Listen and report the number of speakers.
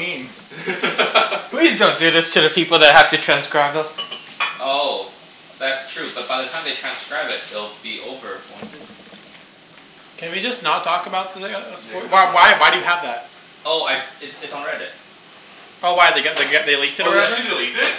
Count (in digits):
4